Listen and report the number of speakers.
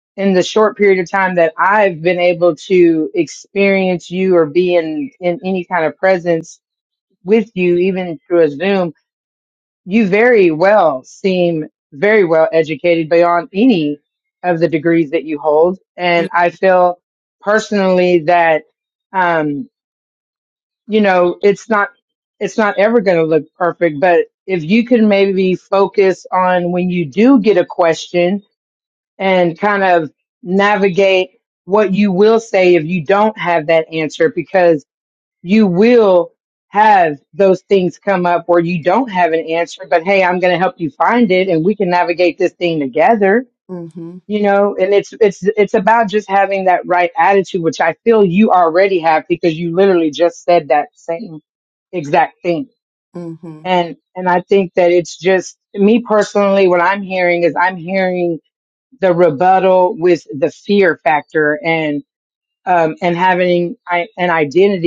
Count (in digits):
2